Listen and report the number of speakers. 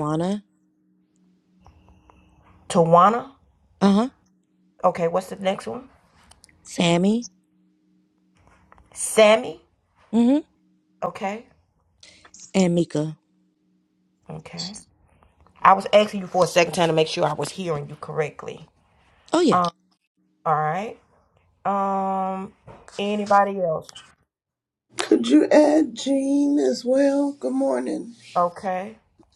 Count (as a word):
three